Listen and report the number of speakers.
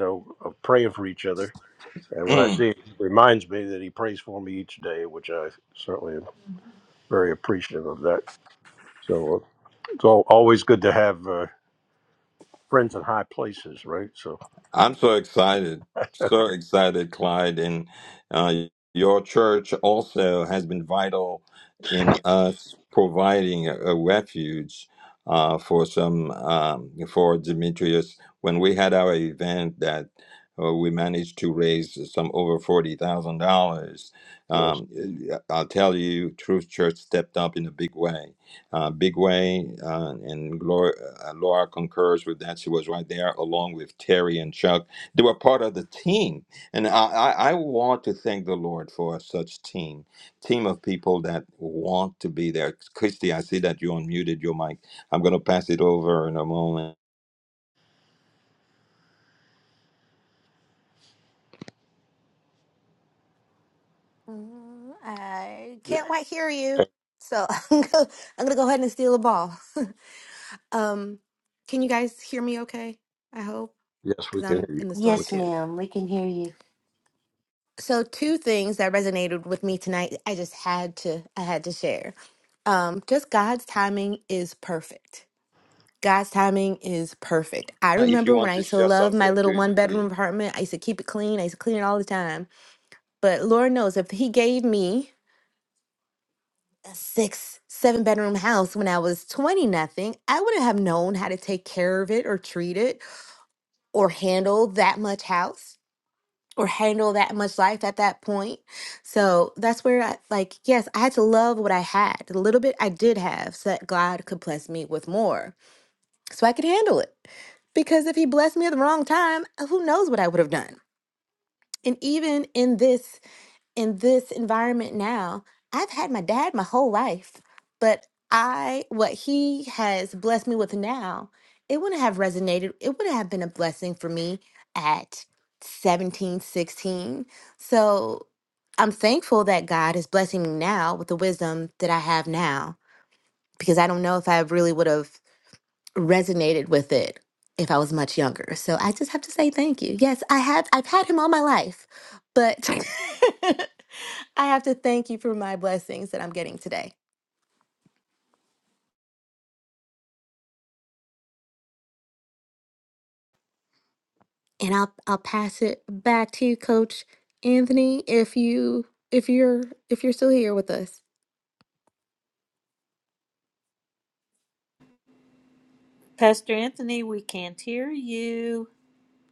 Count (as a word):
five